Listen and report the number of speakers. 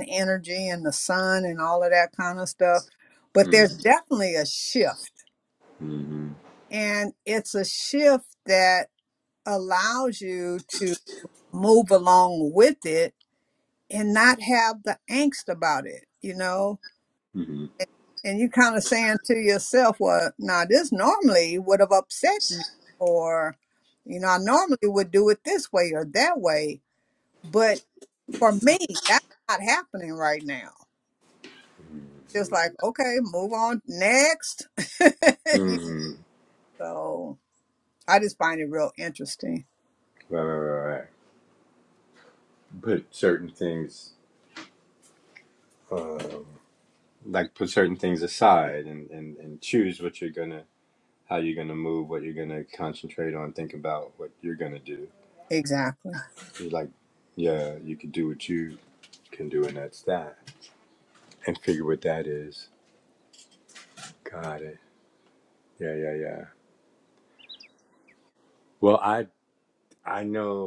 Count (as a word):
two